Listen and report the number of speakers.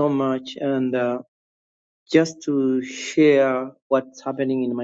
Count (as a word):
one